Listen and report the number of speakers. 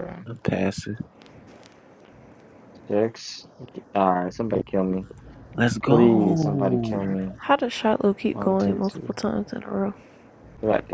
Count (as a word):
three